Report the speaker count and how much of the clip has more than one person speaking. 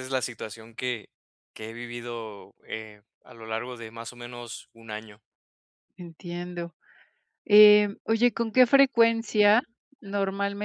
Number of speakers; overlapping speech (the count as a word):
two, no overlap